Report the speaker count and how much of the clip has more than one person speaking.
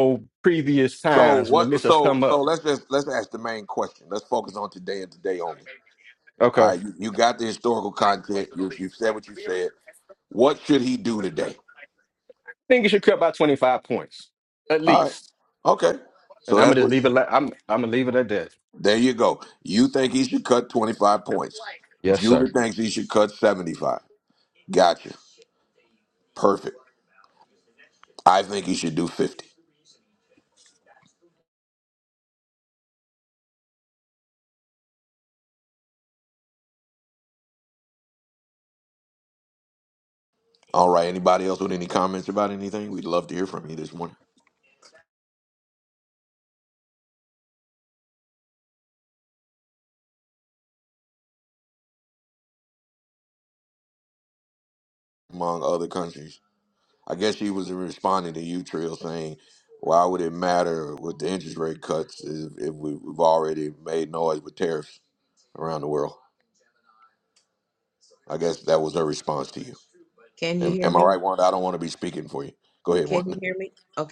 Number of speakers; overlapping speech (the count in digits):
3, about 5%